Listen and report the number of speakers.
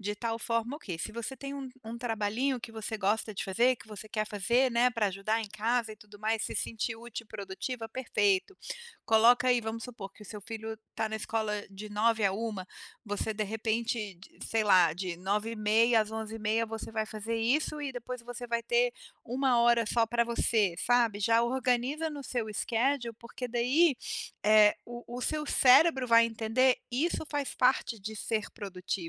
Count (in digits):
1